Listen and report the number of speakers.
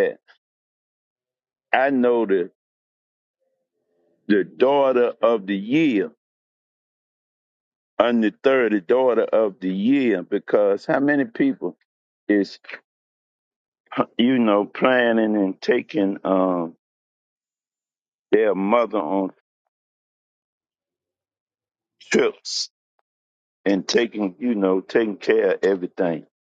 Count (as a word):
one